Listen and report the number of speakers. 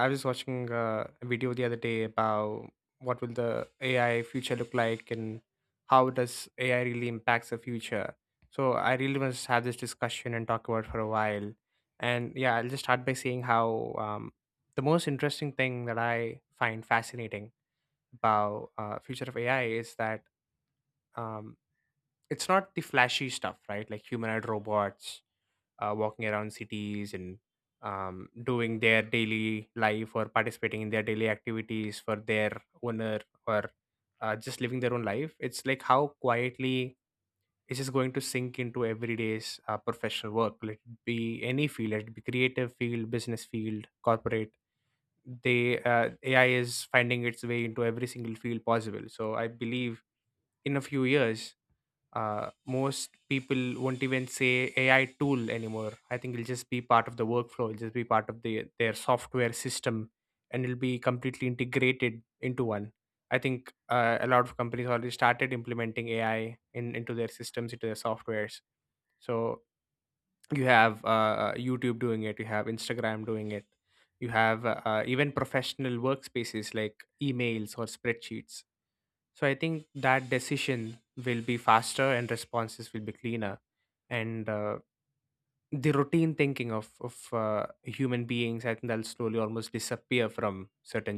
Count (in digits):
1